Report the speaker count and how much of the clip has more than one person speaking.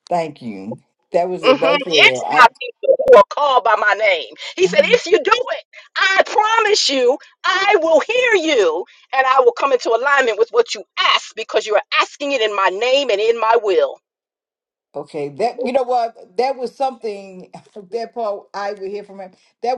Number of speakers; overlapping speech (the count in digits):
2, about 7%